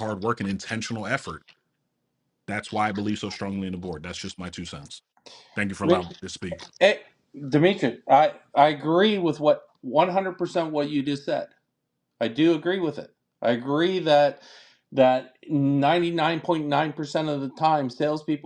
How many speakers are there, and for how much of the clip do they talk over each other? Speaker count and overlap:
two, about 1%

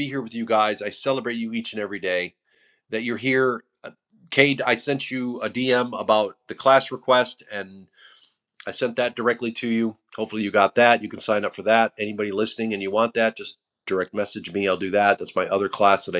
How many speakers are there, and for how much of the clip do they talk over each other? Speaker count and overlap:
one, no overlap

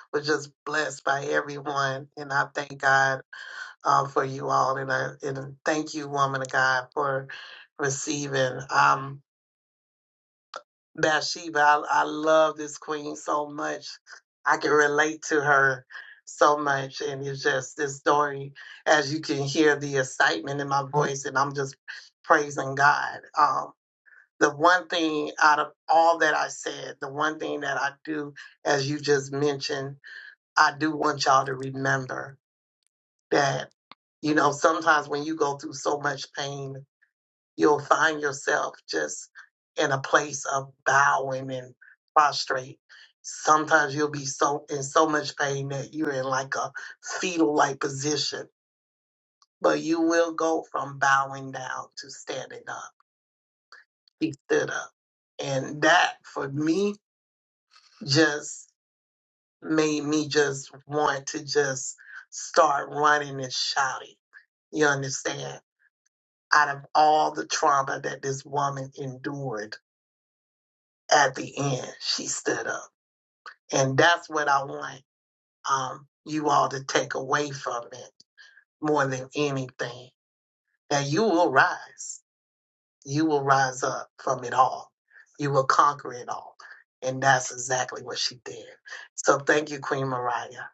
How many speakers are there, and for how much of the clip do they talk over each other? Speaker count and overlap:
one, no overlap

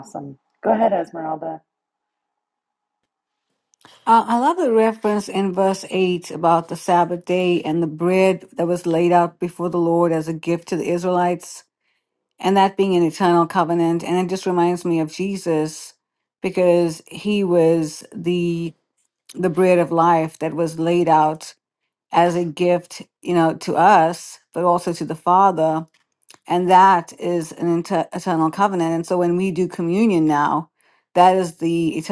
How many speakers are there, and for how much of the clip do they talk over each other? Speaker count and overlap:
two, no overlap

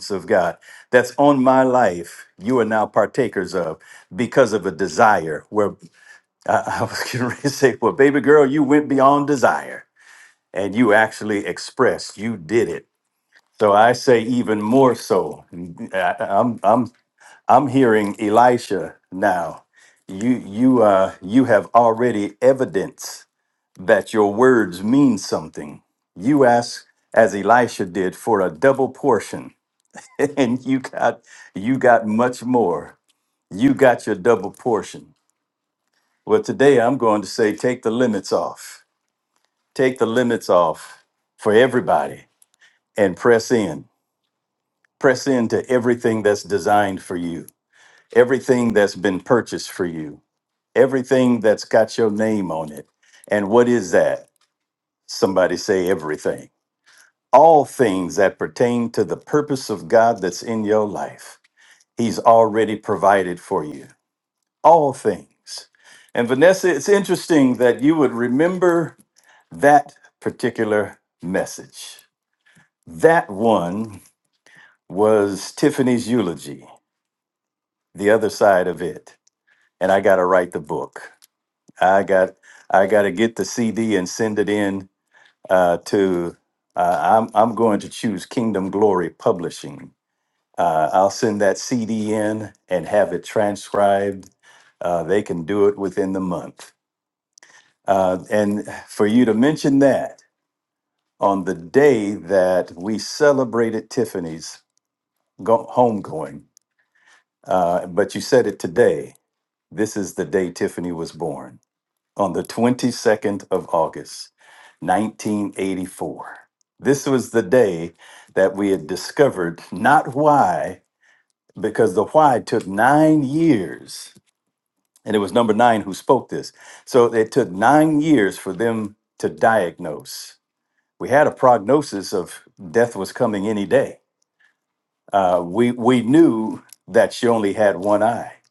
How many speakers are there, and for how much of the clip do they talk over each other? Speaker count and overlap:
one, no overlap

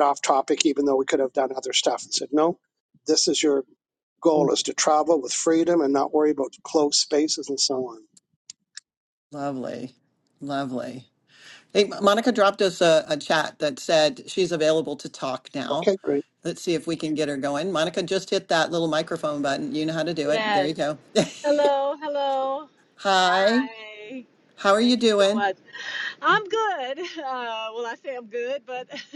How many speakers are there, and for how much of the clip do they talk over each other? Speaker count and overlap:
three, about 6%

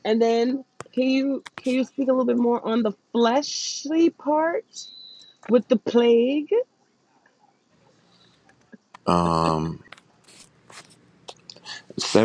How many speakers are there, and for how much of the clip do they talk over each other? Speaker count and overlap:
two, no overlap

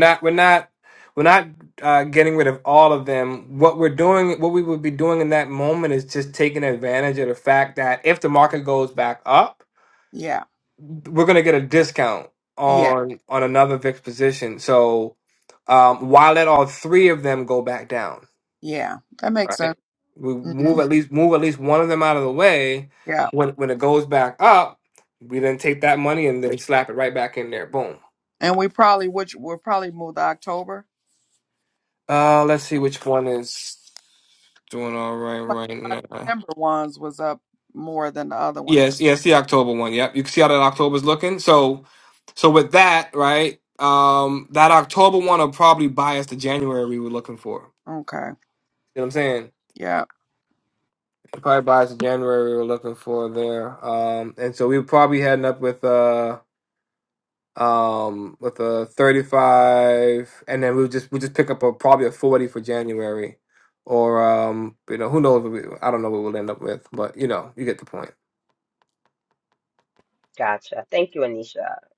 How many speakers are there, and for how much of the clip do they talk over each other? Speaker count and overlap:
three, about 3%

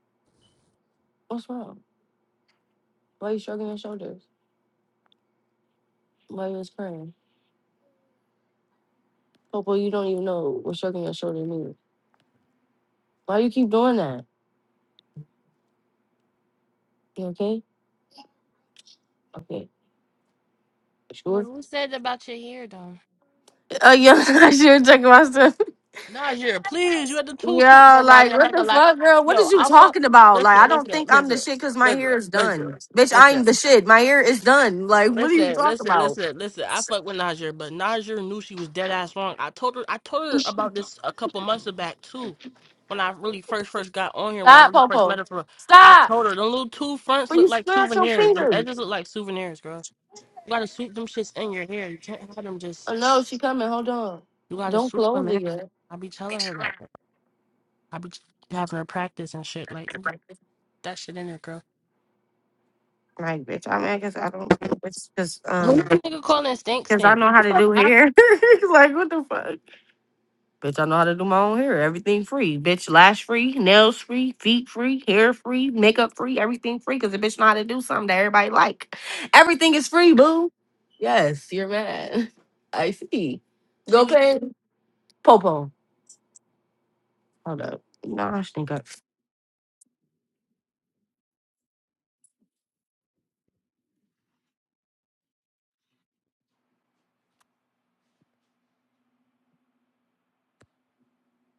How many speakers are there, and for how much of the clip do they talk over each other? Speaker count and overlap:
two, about 9%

